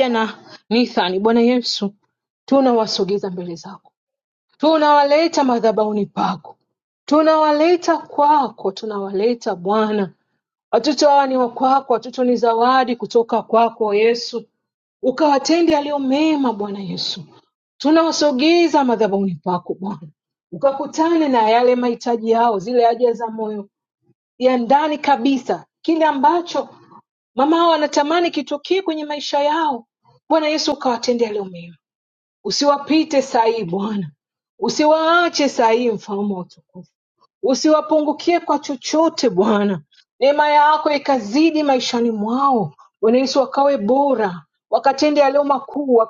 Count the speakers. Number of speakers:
one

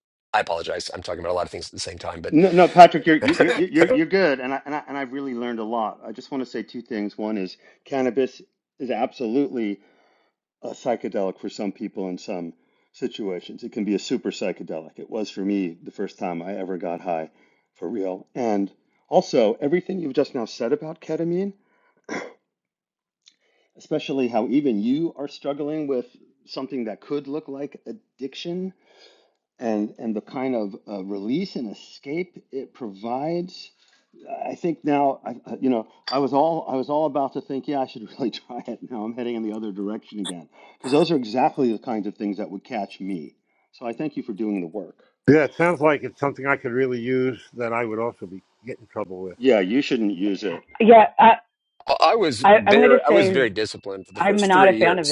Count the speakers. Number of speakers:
four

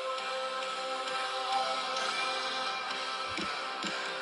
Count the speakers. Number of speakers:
zero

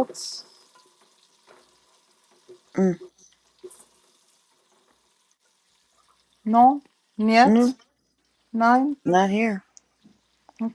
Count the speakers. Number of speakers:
two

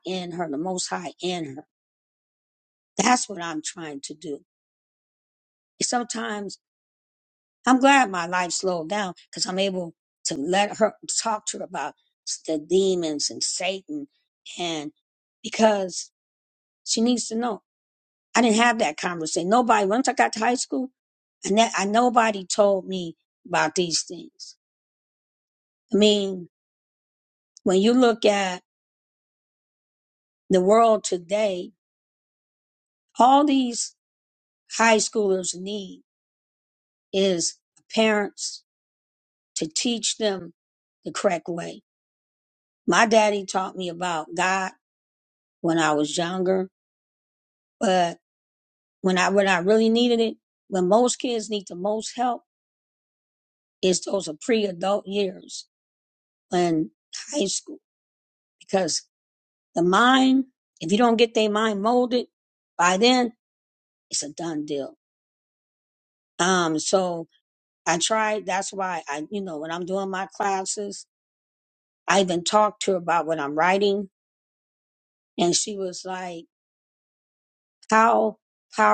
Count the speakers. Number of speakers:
one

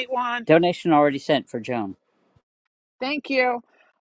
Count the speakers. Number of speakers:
two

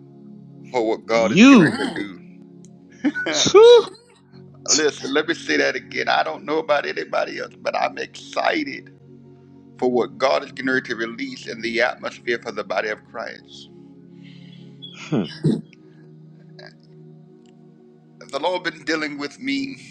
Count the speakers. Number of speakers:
two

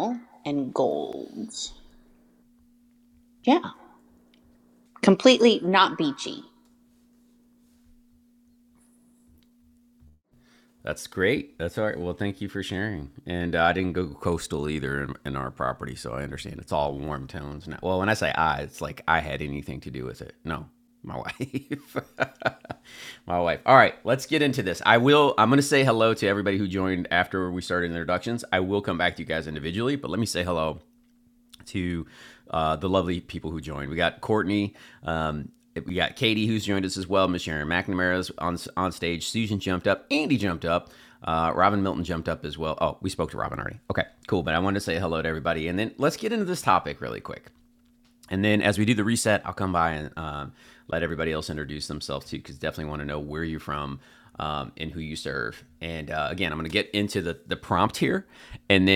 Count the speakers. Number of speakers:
two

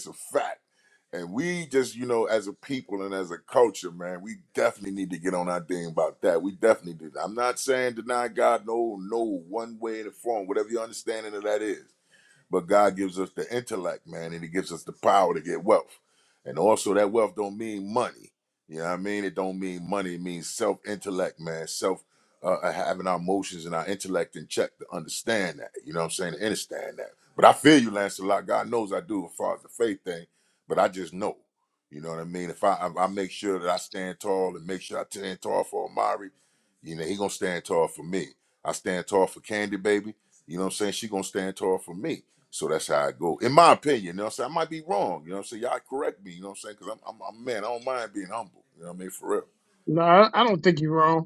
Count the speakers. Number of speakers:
two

